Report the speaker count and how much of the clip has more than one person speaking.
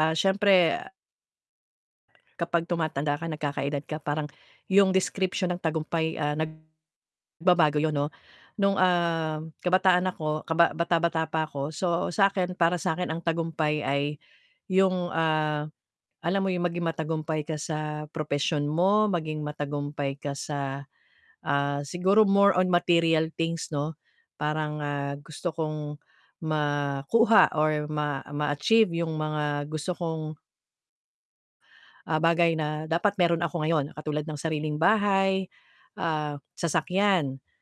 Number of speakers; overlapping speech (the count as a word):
one, no overlap